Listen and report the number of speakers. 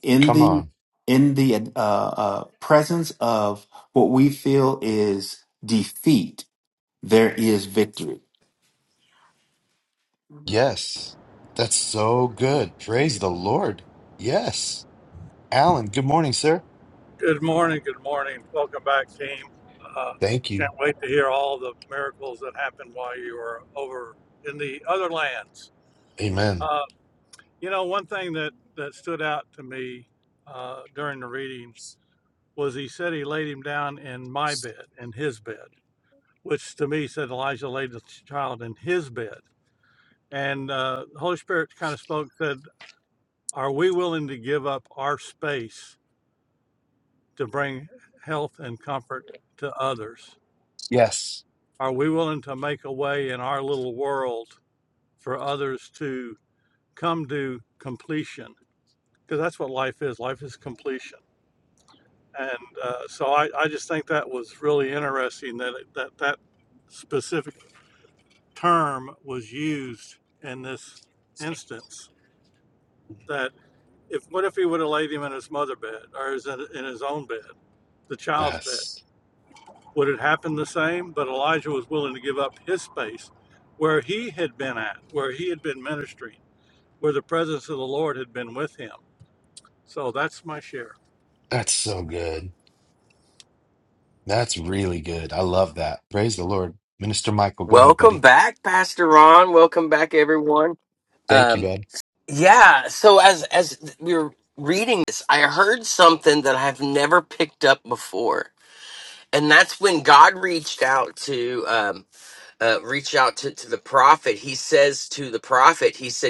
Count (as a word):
four